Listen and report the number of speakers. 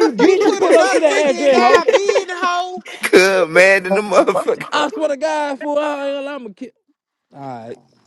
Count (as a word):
three